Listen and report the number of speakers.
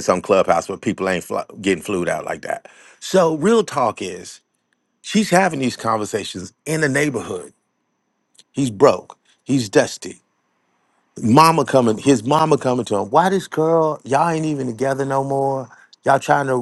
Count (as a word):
one